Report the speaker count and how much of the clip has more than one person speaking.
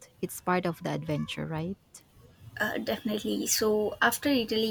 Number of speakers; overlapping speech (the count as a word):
two, no overlap